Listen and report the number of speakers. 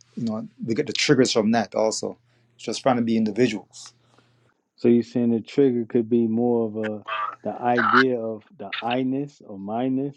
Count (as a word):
two